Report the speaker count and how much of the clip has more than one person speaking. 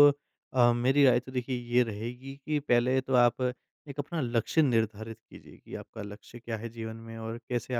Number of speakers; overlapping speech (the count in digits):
1, no overlap